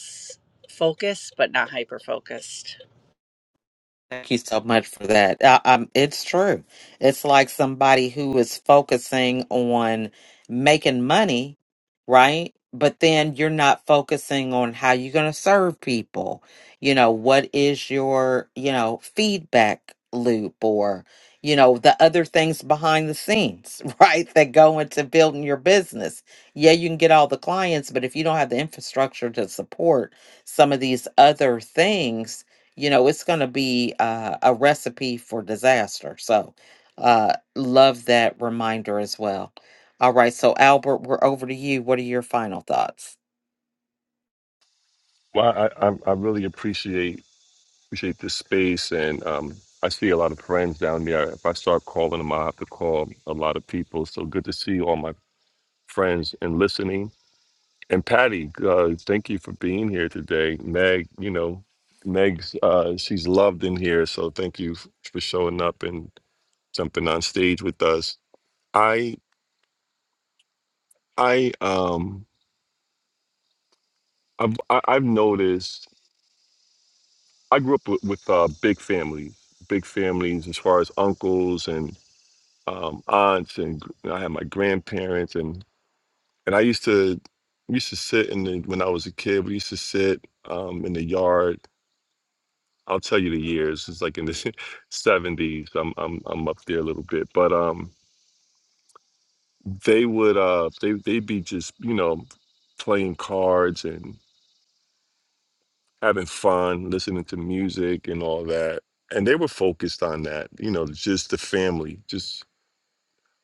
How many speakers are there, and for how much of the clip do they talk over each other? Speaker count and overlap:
3, no overlap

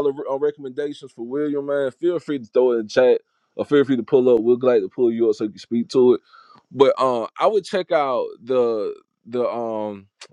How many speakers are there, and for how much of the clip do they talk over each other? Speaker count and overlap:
1, no overlap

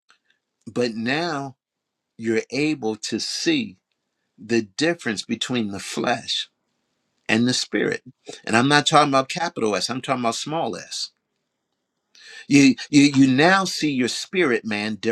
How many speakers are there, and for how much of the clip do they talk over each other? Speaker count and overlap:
1, no overlap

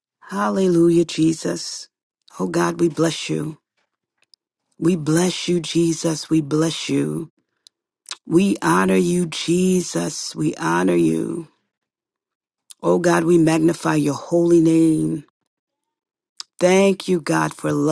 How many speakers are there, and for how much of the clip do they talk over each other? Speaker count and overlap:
1, no overlap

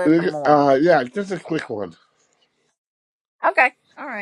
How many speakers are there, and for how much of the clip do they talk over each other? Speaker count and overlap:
2, about 2%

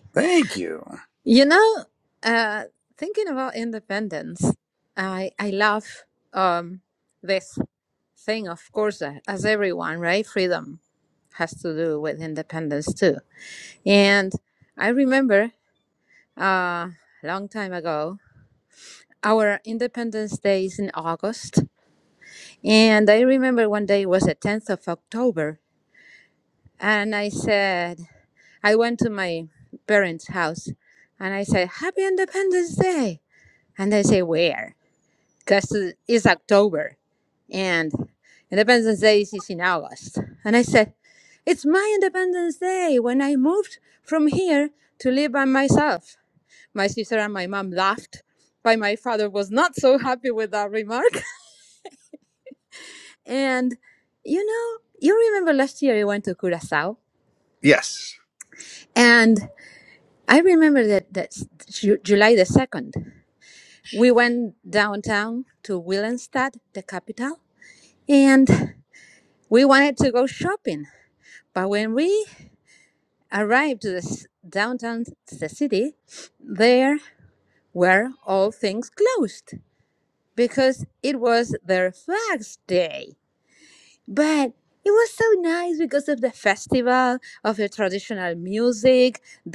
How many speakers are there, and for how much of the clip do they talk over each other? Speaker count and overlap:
2, no overlap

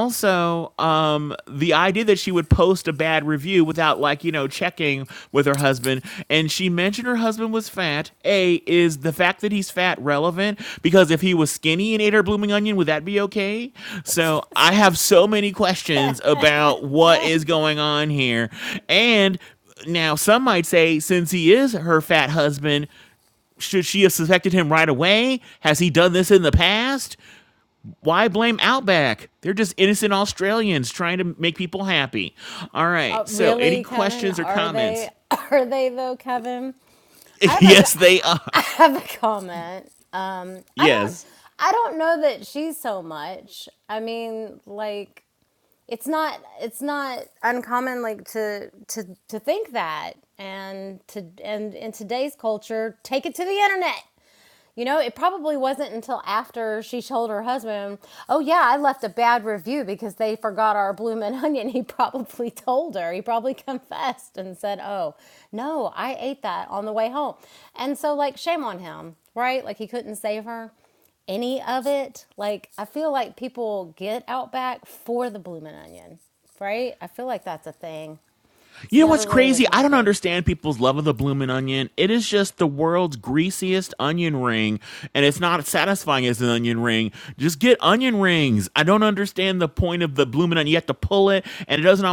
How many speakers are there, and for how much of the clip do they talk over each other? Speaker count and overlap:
2, about 5%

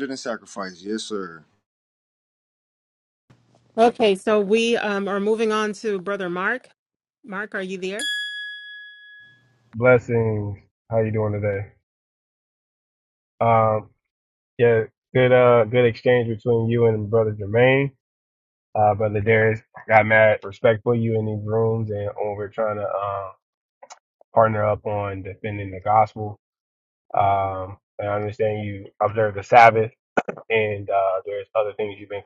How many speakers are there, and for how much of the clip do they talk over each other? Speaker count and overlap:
3, no overlap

